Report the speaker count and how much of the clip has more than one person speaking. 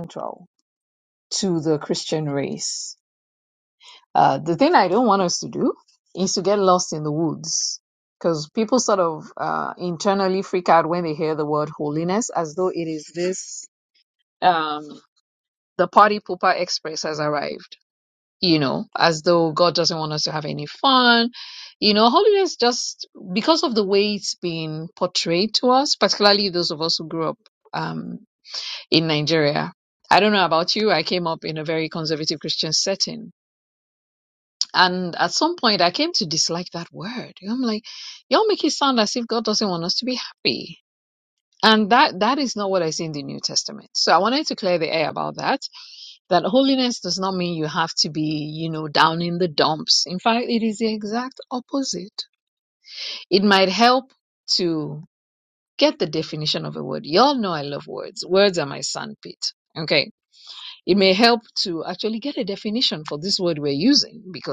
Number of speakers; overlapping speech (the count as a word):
one, no overlap